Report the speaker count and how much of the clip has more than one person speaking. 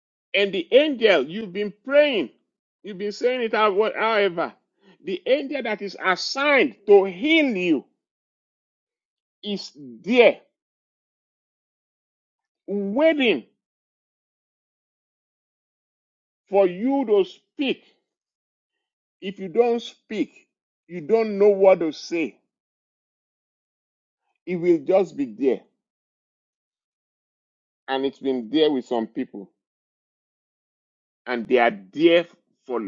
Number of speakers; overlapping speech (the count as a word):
one, no overlap